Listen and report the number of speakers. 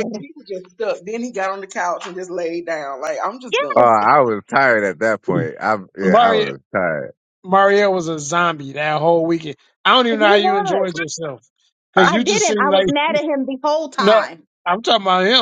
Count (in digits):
4